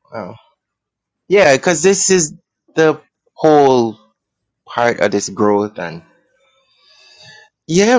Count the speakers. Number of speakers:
1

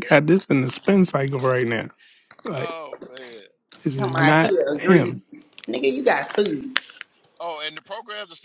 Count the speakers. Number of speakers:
3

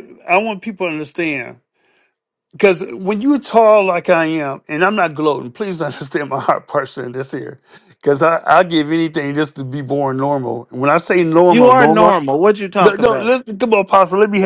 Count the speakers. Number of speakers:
2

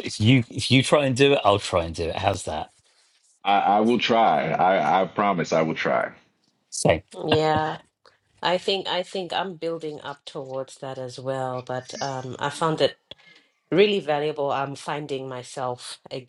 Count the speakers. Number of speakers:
3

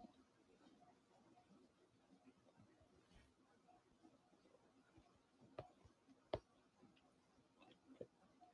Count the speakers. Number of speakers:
0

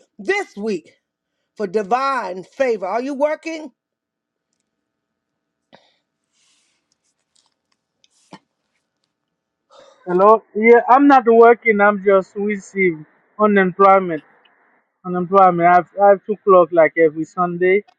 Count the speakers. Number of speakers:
2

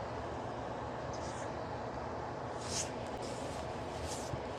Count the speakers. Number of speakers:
0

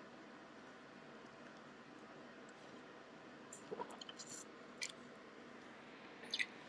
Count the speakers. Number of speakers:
0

